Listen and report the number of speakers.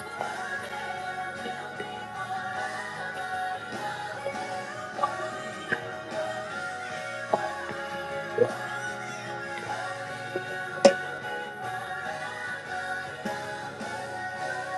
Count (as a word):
zero